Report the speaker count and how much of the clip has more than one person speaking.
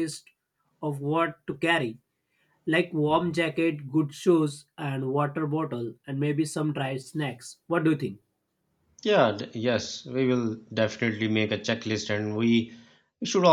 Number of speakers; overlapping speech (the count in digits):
2, no overlap